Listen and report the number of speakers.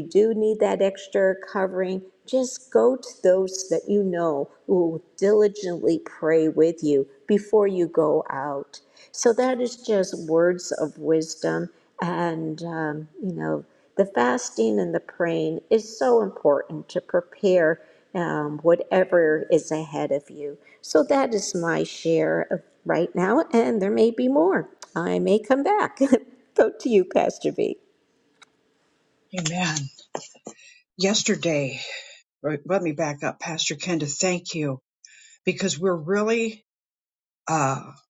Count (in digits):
2